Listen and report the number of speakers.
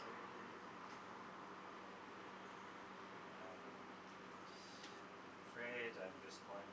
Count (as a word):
one